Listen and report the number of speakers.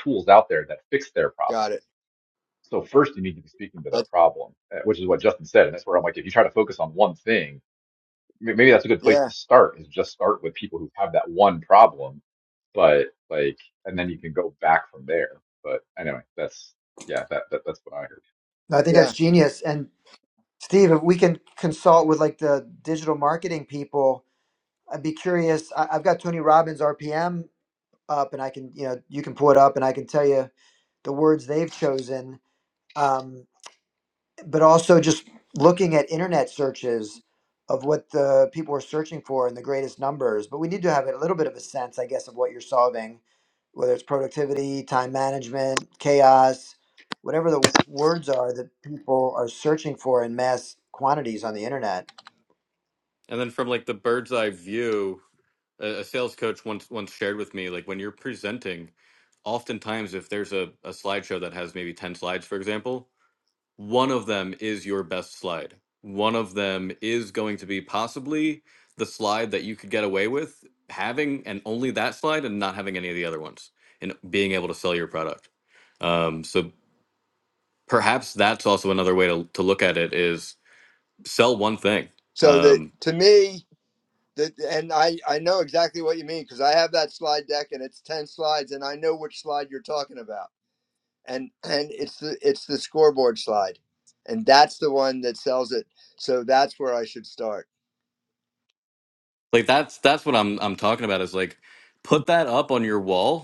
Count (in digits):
4